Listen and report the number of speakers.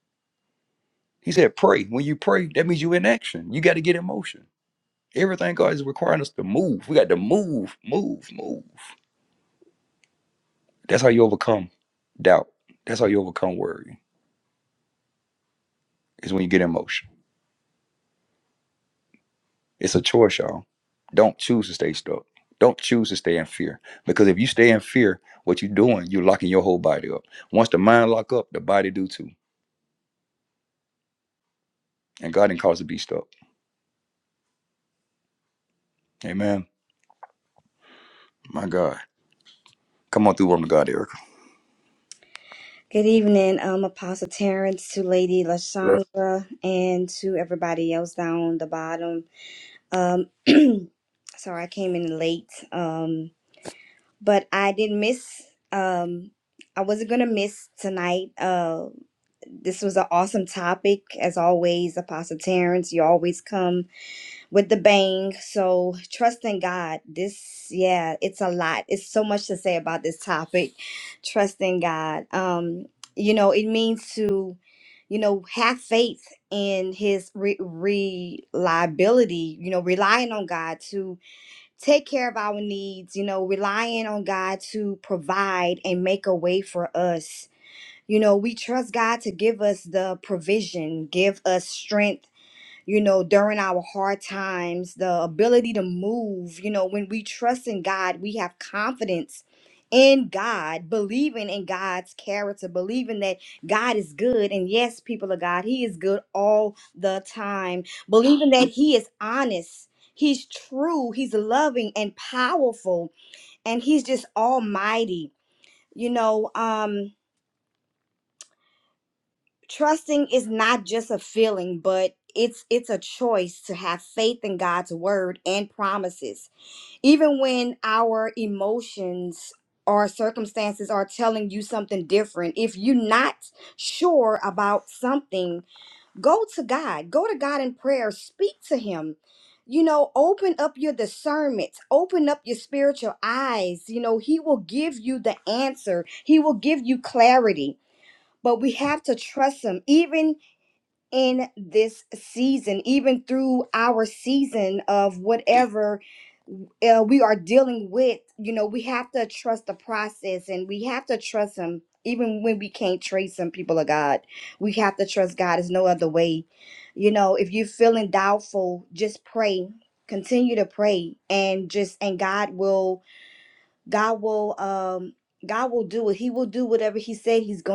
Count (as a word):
two